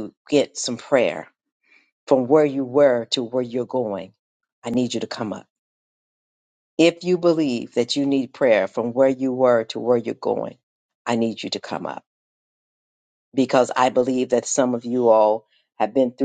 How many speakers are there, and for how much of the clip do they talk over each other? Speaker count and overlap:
1, no overlap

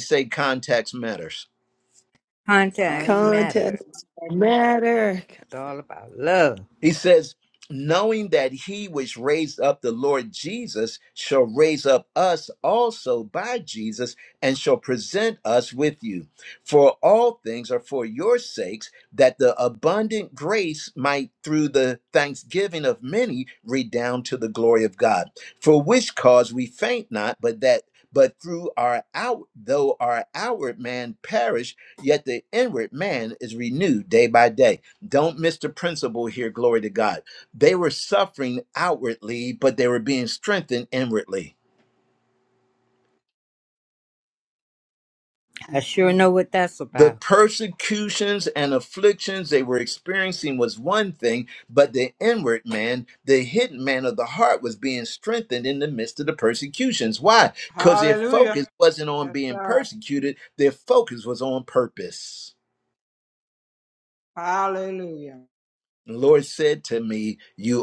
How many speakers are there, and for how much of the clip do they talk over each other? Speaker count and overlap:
4, about 4%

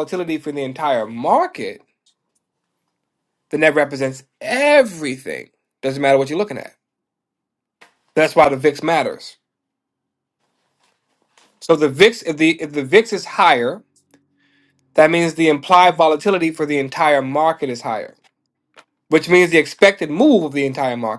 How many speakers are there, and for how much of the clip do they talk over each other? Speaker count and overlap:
1, no overlap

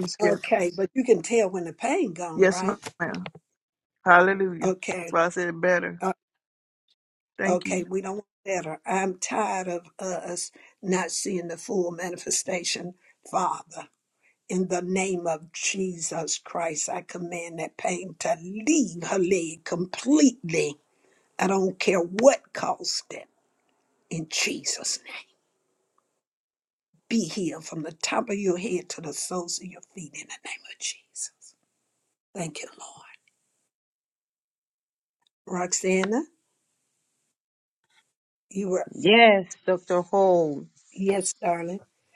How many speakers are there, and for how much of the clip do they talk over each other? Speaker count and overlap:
3, about 3%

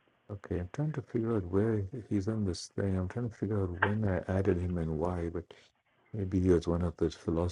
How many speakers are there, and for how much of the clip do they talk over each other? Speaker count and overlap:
1, no overlap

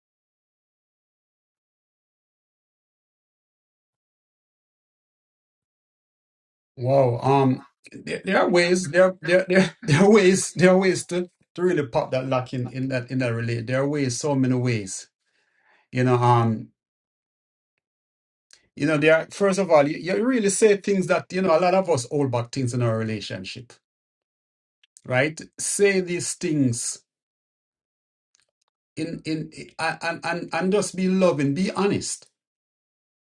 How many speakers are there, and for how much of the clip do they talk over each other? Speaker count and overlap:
1, no overlap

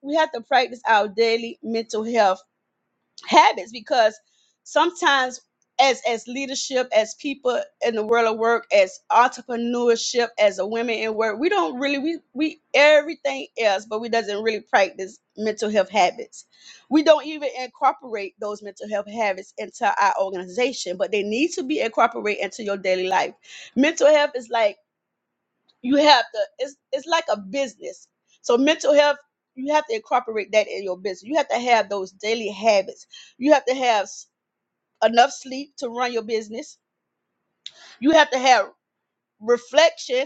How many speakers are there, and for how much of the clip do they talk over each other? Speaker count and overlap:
1, no overlap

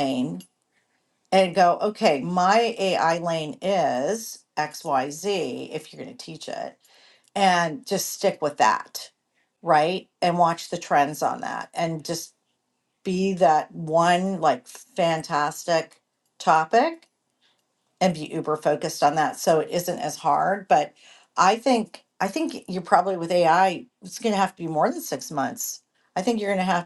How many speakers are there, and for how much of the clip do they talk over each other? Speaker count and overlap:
1, no overlap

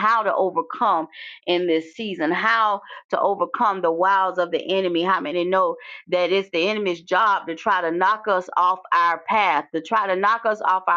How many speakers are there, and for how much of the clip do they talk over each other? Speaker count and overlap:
1, no overlap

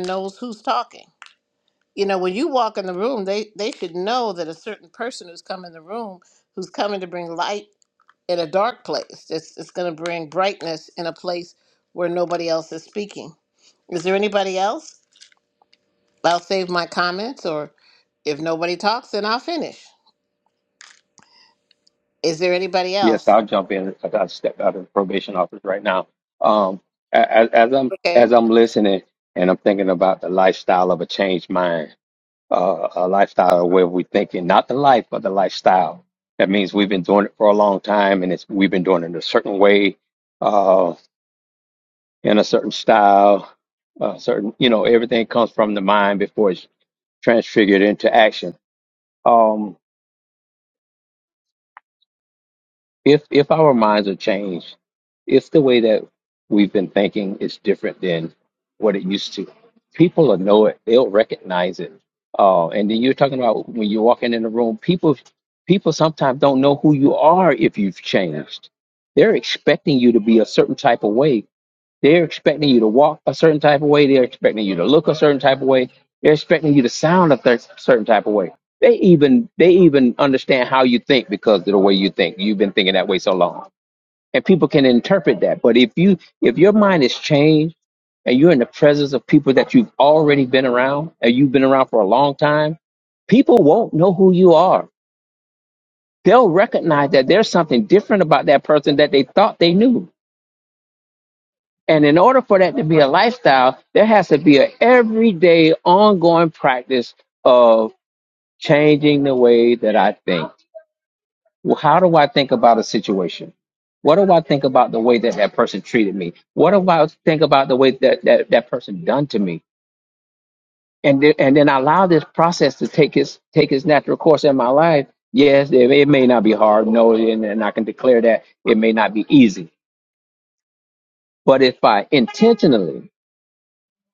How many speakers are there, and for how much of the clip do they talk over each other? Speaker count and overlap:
2, under 1%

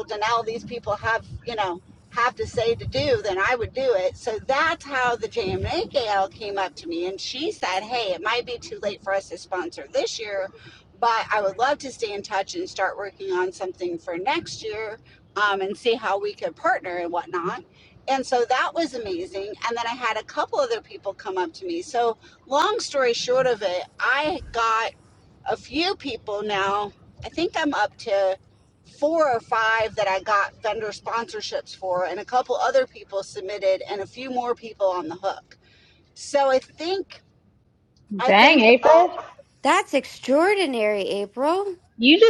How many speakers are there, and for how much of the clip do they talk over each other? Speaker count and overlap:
3, about 2%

